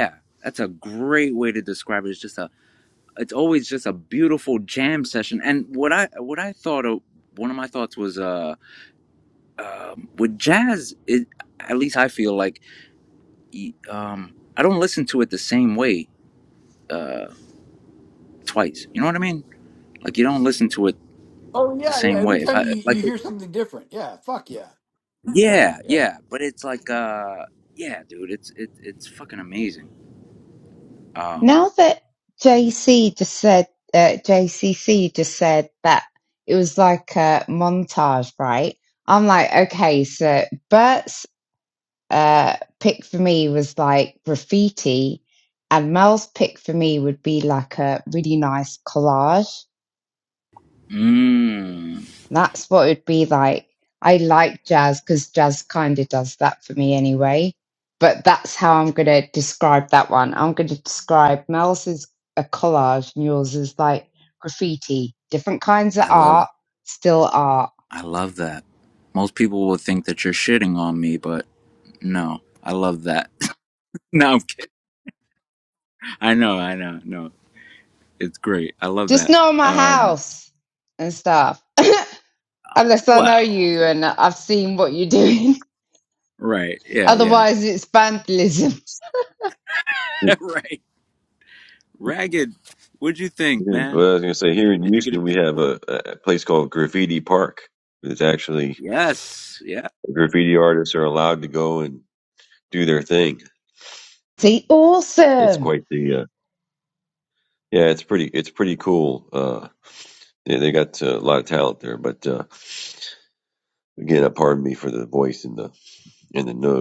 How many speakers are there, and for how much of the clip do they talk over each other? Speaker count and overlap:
4, about 5%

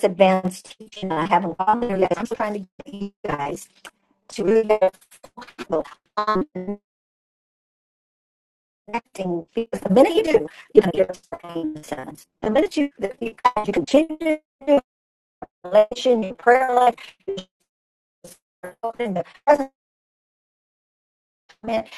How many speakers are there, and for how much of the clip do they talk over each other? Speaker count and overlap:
1, no overlap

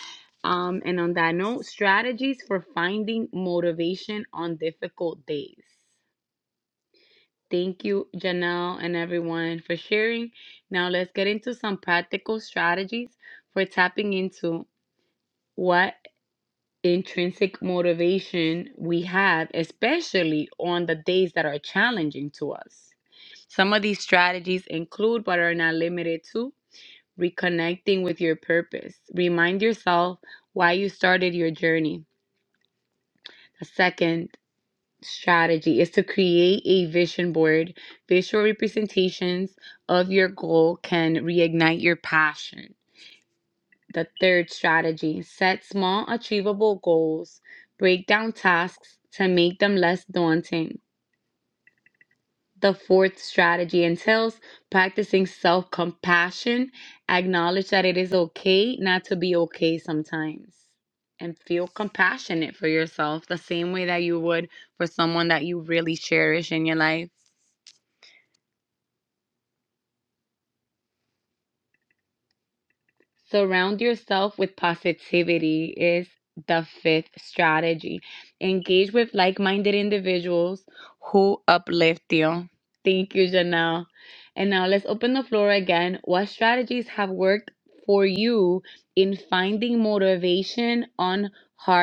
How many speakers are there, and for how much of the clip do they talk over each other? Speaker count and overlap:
1, no overlap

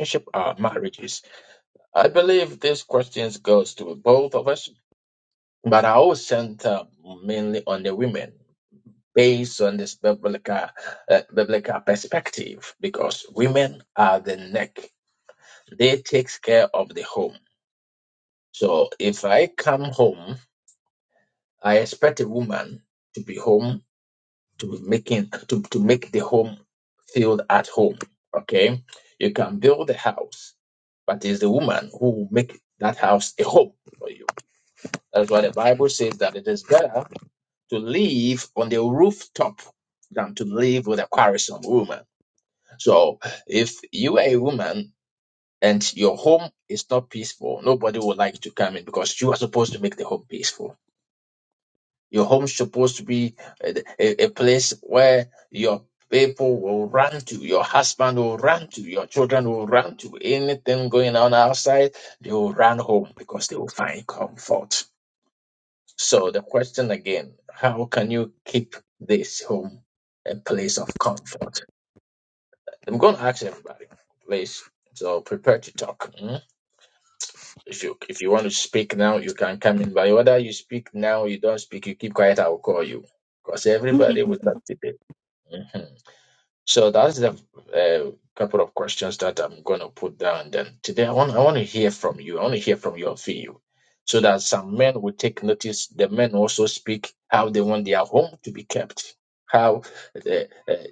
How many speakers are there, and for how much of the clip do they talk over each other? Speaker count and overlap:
1, no overlap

